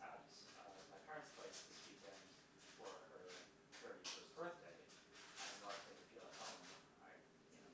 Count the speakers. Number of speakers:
one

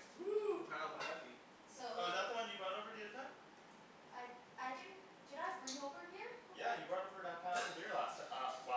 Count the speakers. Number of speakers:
three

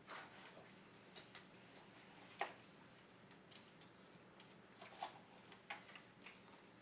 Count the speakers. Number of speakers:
zero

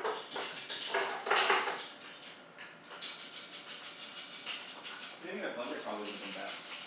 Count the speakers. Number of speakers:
one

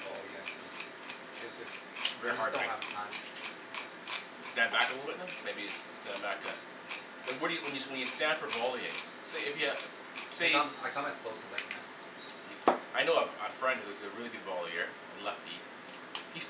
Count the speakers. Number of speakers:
two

